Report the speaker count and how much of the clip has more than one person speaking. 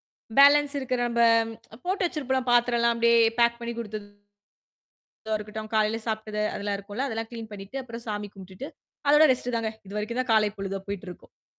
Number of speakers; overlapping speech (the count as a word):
one, no overlap